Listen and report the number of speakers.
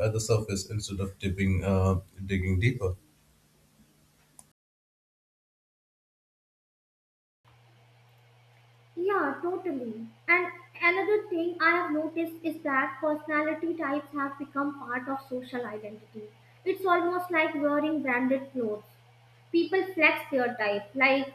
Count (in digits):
2